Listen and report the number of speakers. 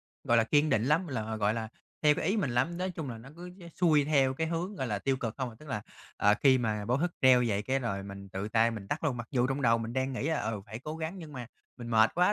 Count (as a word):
one